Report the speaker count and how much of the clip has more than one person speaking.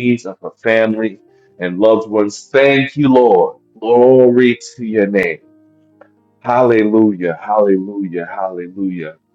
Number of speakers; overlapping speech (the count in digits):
1, no overlap